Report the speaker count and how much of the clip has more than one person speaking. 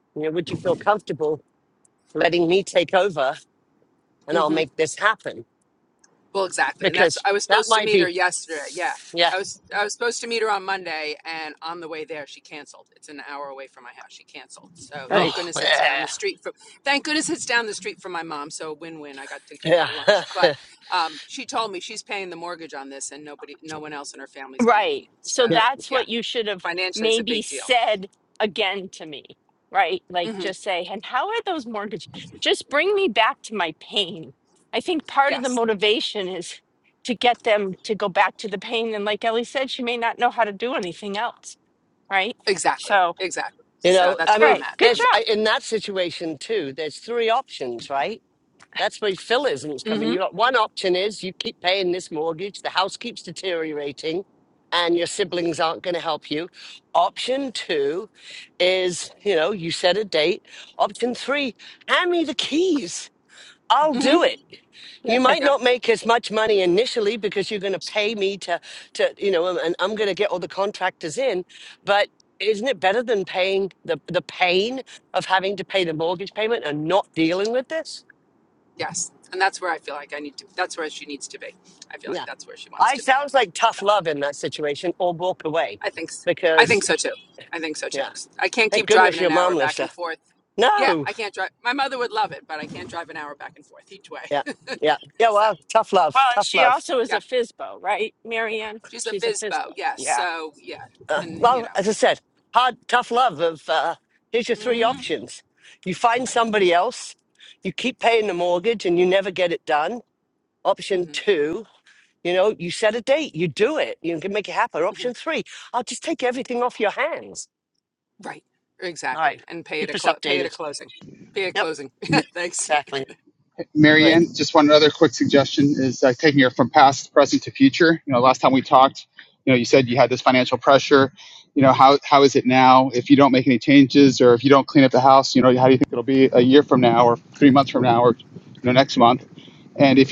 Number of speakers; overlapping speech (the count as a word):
four, about 11%